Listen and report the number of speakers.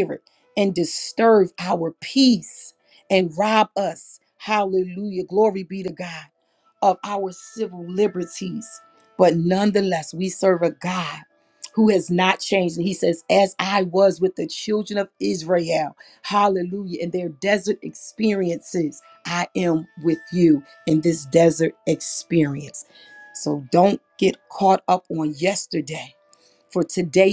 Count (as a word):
one